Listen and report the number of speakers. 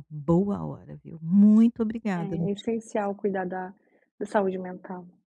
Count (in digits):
2